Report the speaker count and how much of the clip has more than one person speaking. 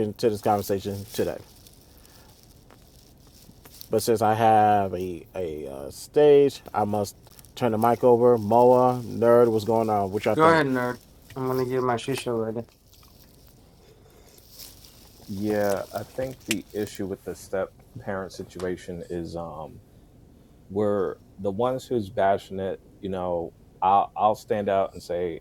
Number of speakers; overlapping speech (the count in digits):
3, about 1%